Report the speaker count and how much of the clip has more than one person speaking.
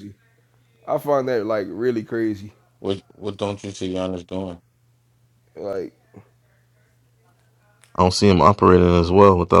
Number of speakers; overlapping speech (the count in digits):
3, no overlap